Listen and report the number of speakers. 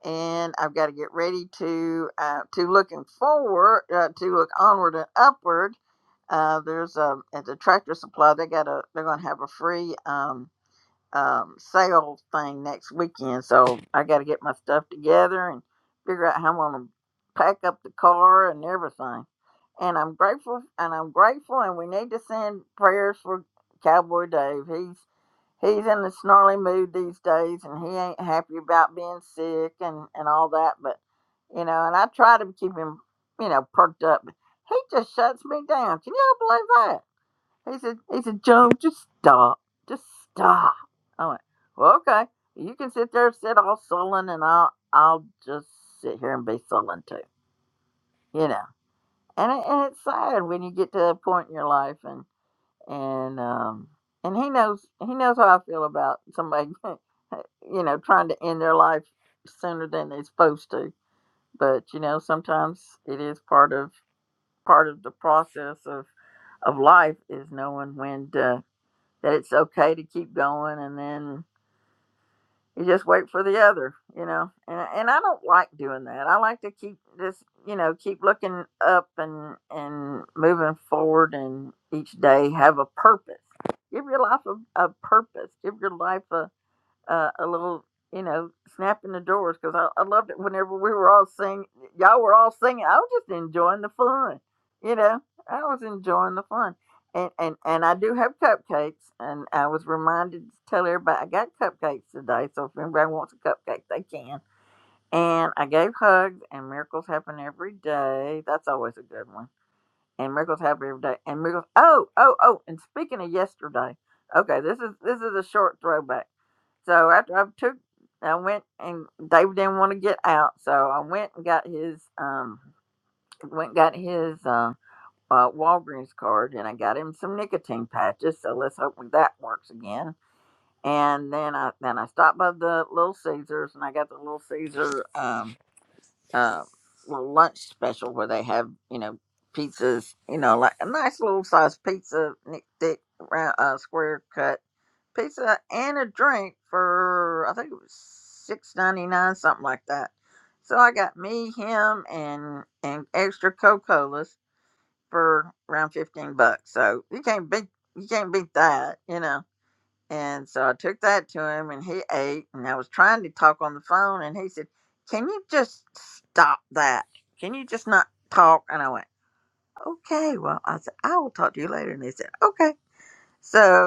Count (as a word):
one